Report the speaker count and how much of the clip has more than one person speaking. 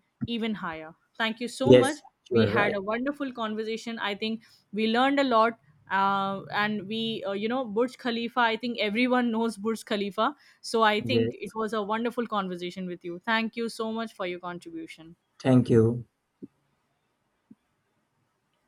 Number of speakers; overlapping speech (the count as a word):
two, about 6%